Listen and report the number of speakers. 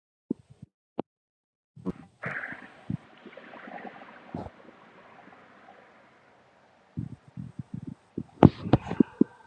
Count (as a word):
zero